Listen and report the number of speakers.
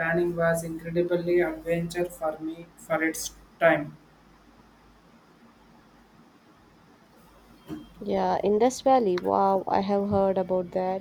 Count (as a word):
two